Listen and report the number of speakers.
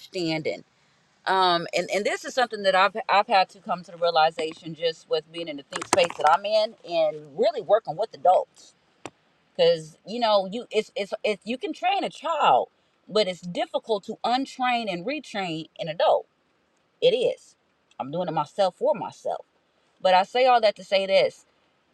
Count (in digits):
1